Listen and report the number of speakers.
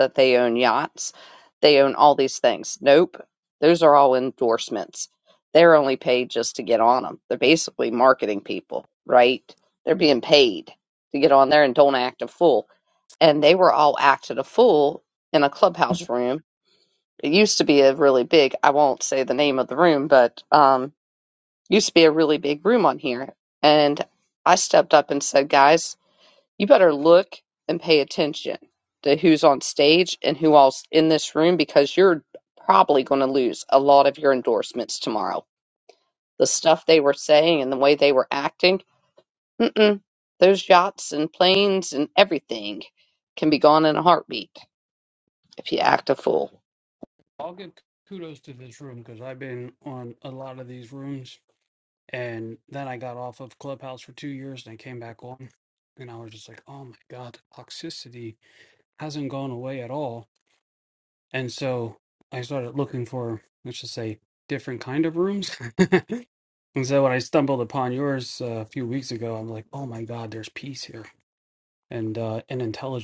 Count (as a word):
two